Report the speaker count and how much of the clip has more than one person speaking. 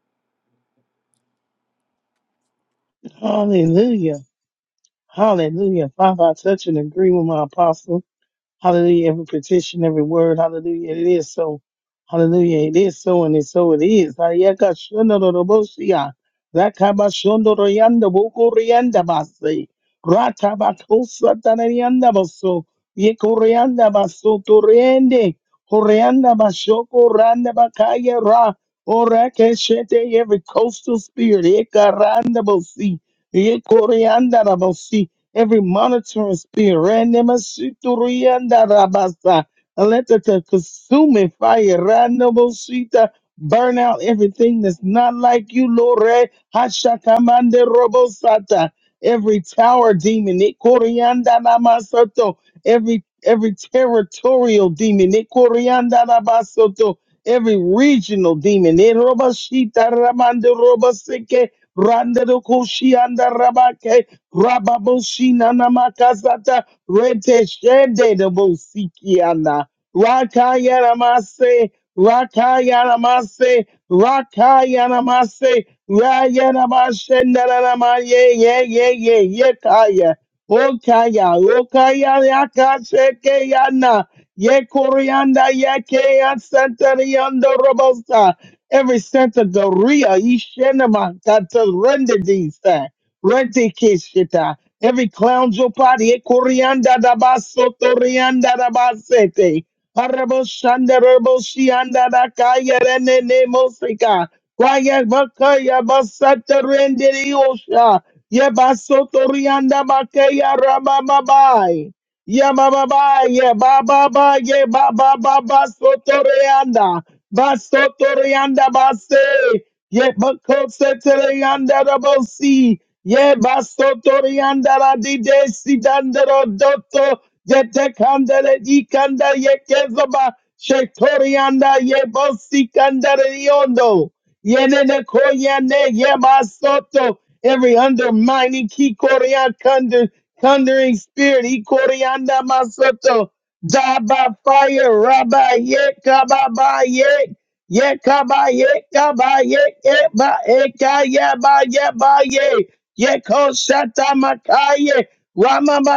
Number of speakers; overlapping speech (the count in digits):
1, no overlap